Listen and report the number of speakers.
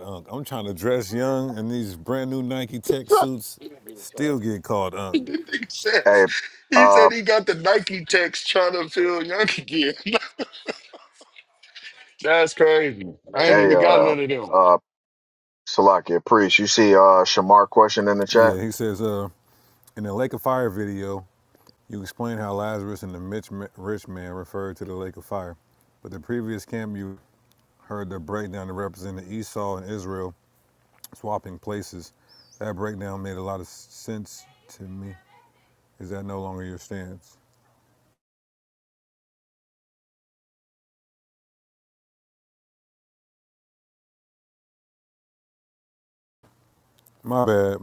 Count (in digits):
3